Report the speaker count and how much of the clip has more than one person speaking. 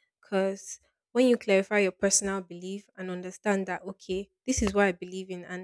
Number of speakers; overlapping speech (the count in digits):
1, no overlap